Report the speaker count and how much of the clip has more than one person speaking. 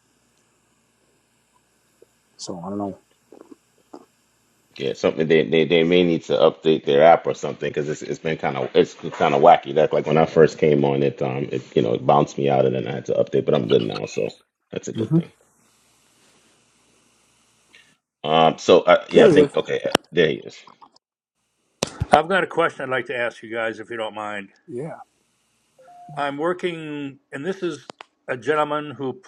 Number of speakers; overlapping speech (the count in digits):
3, about 2%